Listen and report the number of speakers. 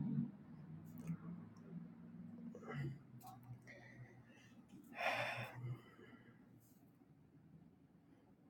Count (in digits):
0